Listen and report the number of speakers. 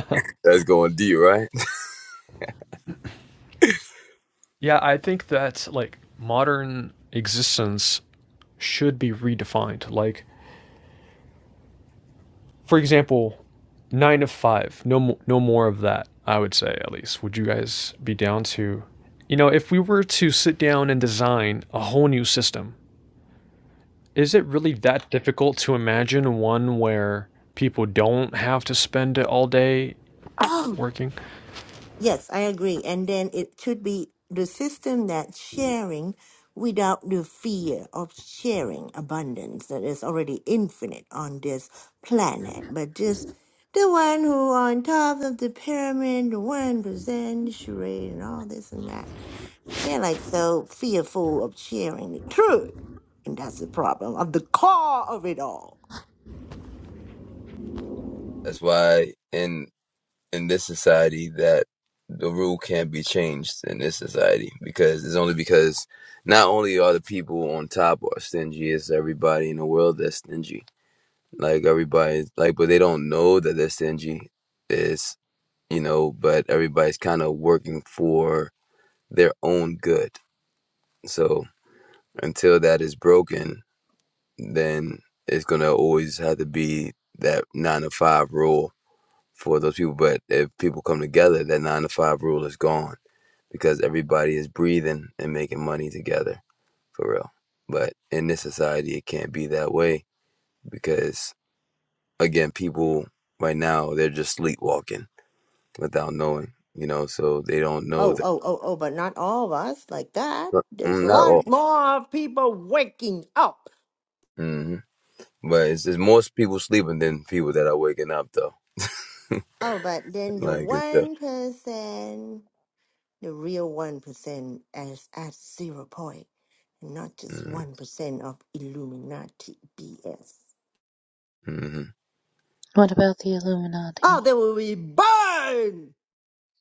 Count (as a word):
four